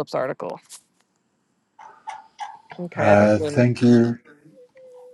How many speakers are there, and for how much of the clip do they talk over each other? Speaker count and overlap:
2, about 14%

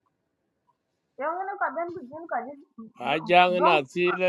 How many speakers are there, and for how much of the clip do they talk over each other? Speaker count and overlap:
2, about 8%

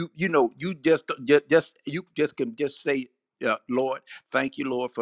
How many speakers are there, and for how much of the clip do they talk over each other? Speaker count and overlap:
1, no overlap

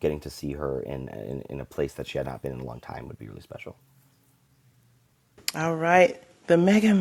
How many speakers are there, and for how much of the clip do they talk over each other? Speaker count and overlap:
2, no overlap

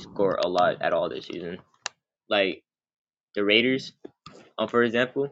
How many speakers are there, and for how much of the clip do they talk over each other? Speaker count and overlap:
1, no overlap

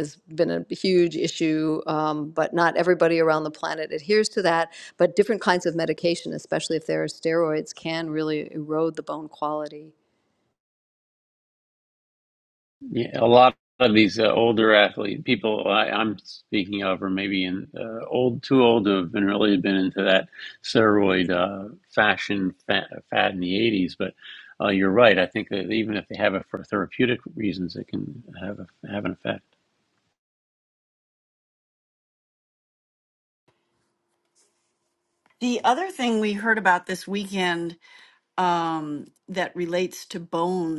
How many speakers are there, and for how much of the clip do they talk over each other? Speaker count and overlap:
3, no overlap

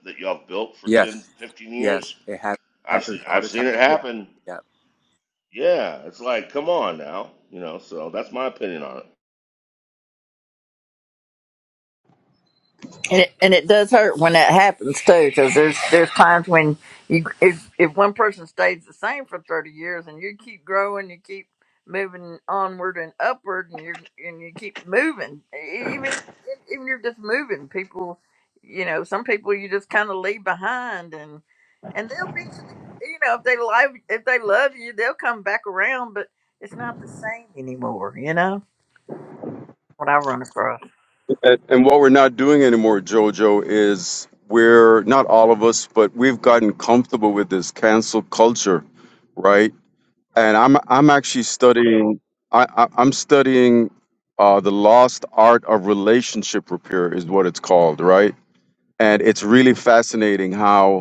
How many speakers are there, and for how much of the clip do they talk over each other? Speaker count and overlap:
4, about 2%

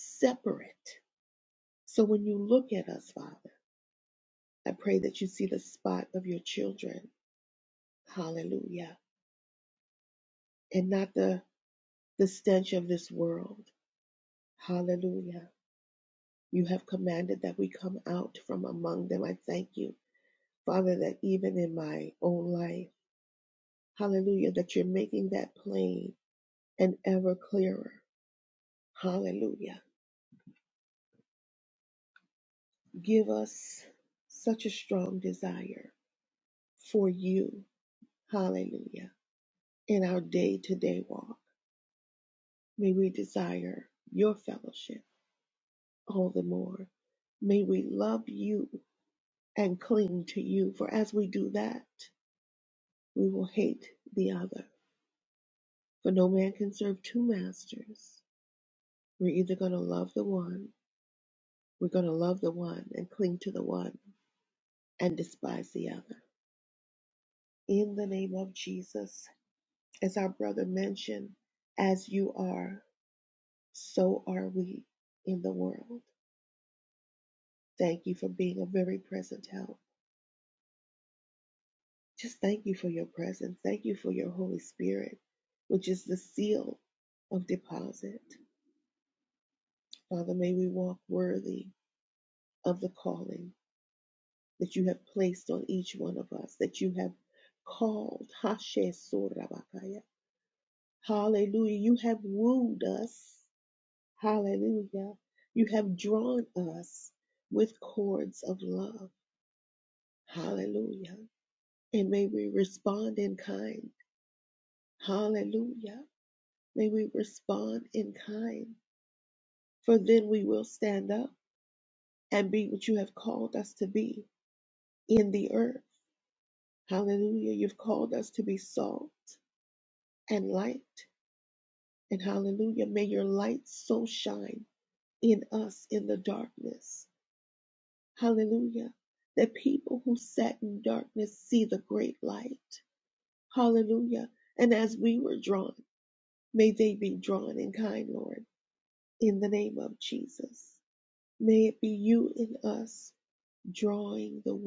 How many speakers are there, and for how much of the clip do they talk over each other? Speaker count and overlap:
1, no overlap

